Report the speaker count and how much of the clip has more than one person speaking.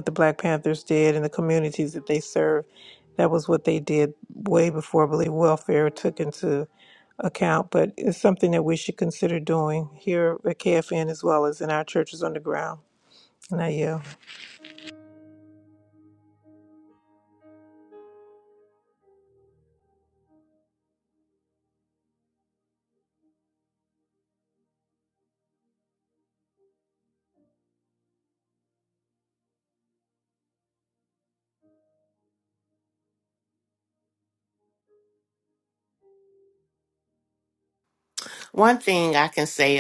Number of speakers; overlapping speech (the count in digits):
2, no overlap